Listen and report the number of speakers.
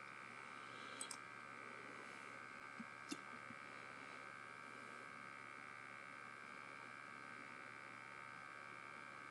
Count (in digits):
0